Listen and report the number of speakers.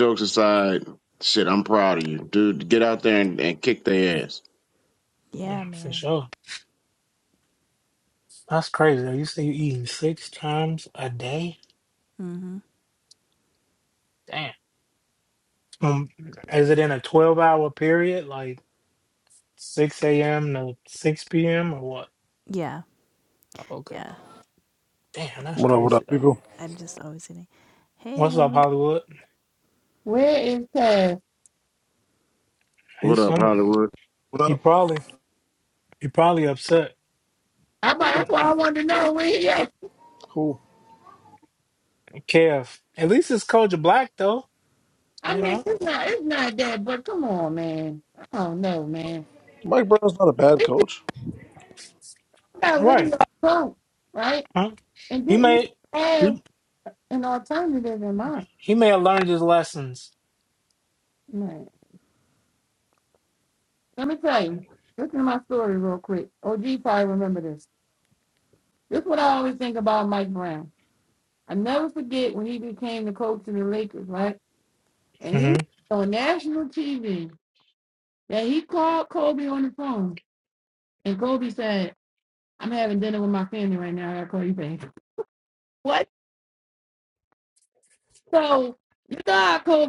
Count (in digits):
5